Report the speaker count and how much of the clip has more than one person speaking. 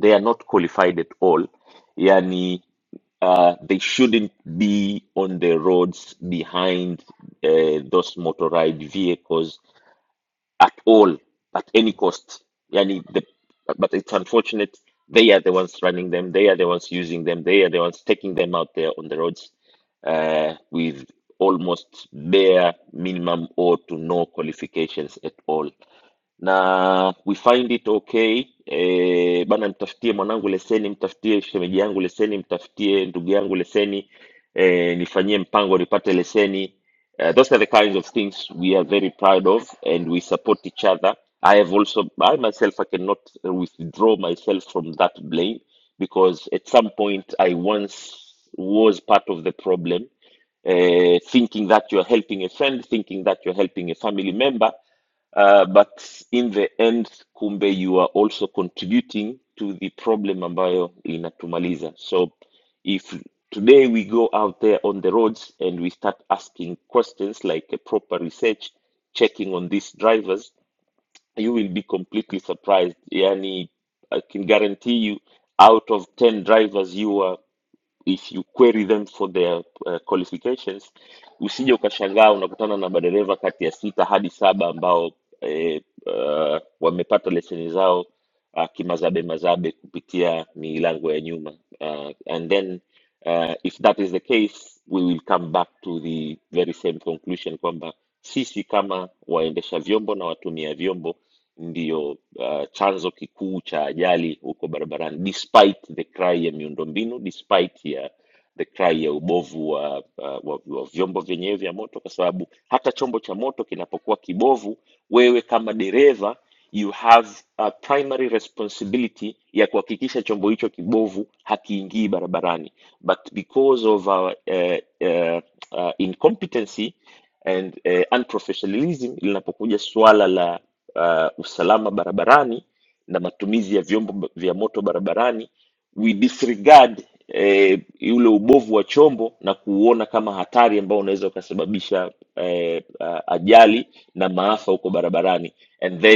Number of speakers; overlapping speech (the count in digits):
1, no overlap